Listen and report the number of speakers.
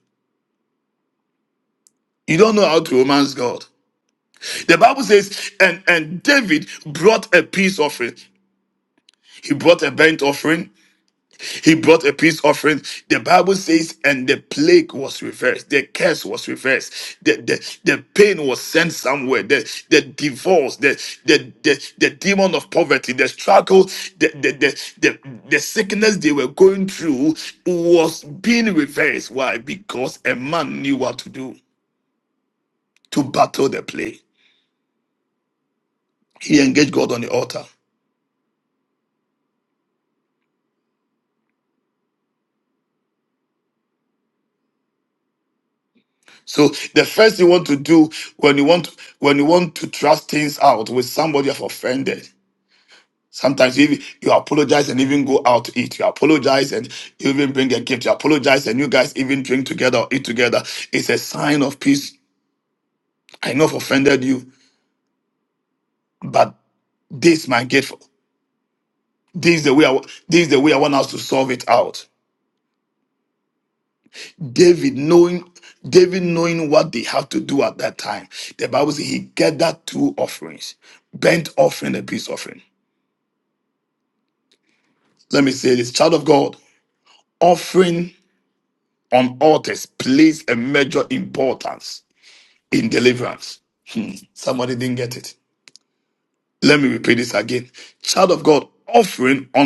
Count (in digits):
1